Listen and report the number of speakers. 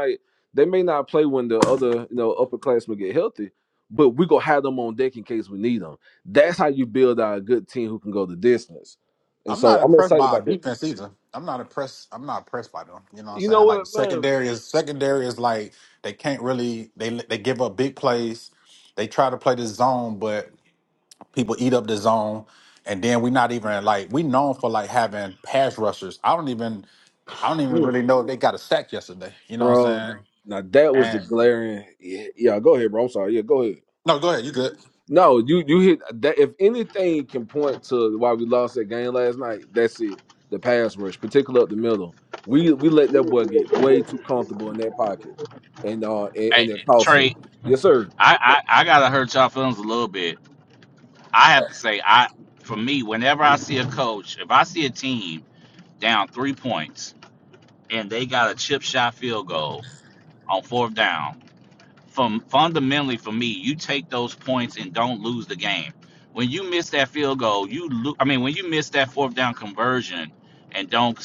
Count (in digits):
3